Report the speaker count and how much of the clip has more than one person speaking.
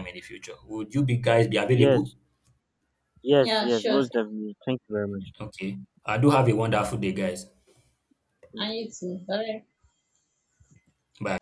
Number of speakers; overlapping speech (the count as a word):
three, about 8%